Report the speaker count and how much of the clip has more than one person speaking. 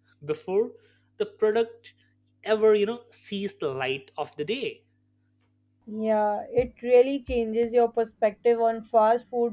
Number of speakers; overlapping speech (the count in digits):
2, no overlap